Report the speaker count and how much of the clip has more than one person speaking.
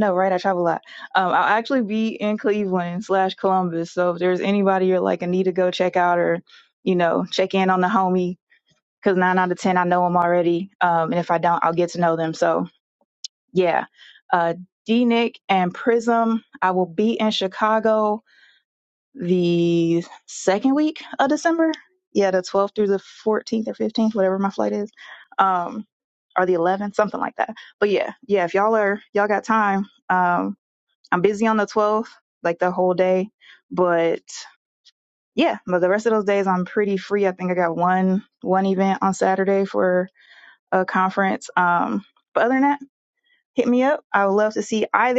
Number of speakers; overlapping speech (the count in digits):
1, no overlap